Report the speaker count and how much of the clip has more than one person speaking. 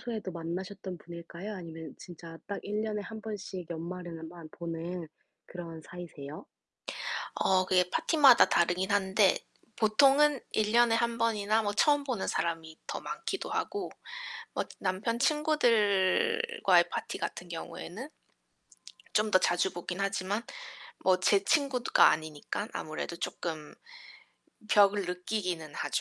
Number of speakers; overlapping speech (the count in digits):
2, no overlap